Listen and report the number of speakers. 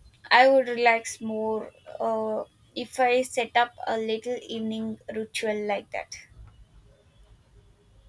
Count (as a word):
one